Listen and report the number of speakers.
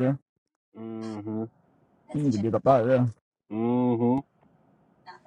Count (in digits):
2